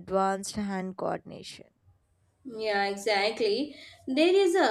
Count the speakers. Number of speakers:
2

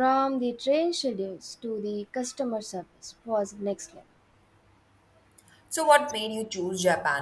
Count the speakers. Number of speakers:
2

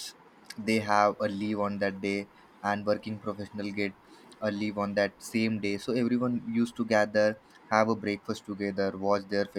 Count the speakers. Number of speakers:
1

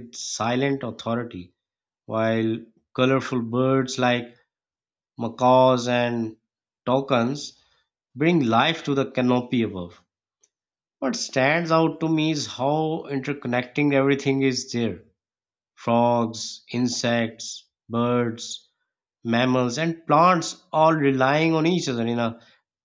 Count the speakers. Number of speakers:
1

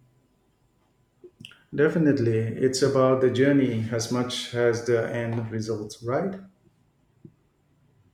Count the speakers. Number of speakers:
1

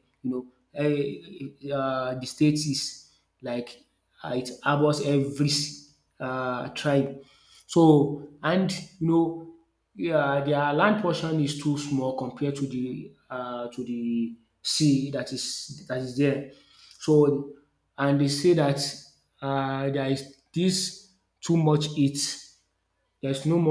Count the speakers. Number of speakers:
1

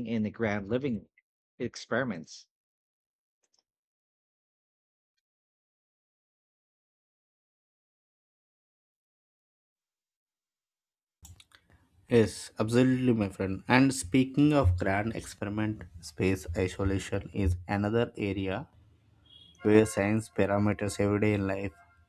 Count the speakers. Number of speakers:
2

